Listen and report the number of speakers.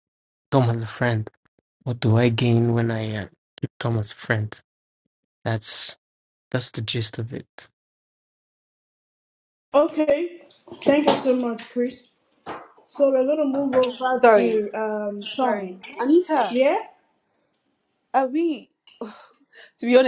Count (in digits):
3